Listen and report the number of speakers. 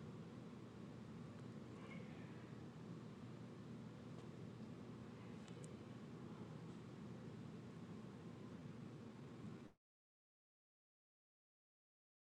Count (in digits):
0